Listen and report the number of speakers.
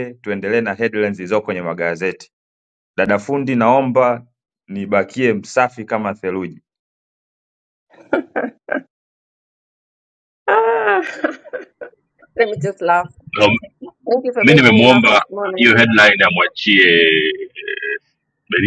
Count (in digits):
3